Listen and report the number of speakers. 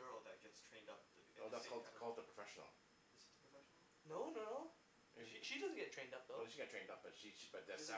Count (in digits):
3